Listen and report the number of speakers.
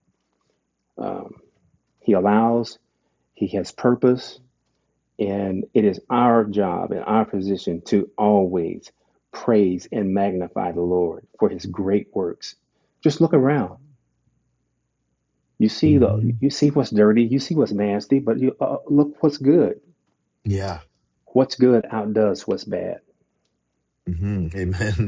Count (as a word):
two